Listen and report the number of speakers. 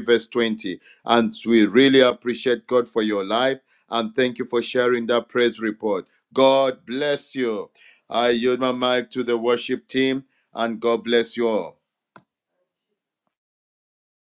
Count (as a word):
one